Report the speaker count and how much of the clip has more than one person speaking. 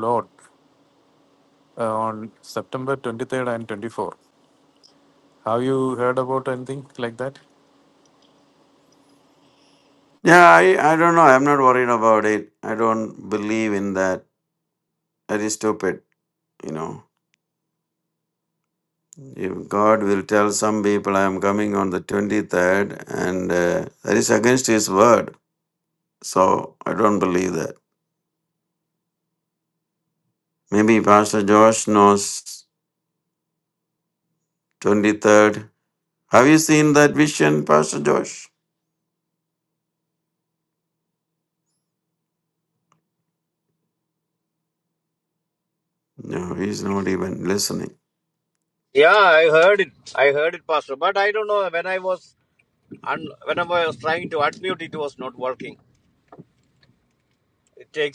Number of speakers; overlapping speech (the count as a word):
three, no overlap